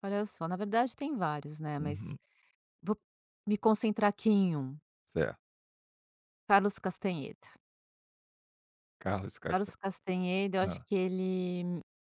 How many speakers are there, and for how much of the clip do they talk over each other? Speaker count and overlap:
2, about 4%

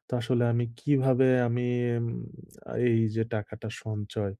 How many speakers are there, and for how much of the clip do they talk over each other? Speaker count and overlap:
1, no overlap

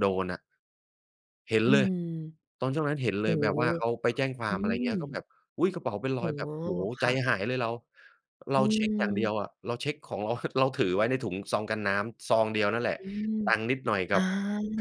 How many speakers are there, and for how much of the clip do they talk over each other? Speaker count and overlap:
2, about 13%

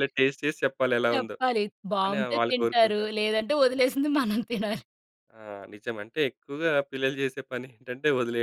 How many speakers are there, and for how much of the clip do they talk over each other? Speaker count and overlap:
2, about 15%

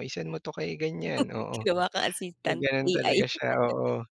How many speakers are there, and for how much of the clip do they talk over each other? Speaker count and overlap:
2, about 21%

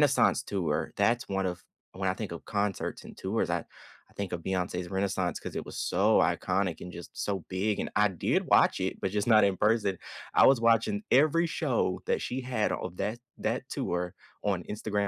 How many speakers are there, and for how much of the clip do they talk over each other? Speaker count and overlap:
1, no overlap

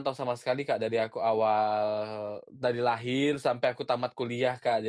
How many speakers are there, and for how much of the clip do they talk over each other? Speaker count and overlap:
1, no overlap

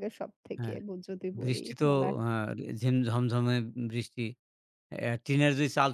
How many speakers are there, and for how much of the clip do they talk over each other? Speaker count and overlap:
2, about 15%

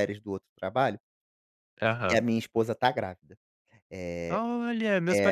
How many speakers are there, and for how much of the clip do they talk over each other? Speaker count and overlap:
2, about 8%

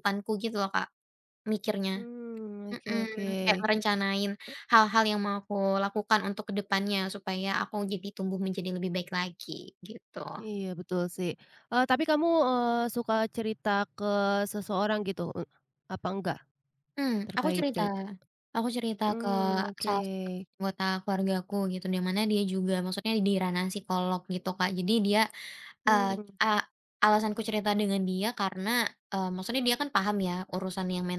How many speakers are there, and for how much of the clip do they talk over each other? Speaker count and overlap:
2, about 8%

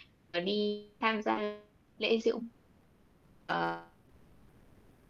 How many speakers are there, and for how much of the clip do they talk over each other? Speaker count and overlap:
1, no overlap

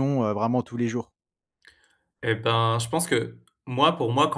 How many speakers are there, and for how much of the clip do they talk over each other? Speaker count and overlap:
2, no overlap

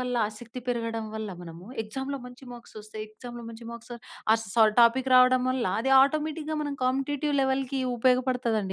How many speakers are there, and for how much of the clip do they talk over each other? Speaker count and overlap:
1, no overlap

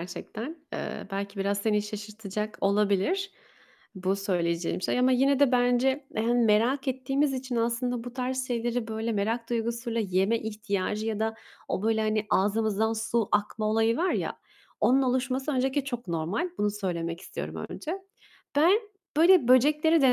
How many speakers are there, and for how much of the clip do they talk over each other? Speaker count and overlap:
1, no overlap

